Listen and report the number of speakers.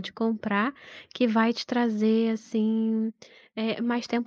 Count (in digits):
1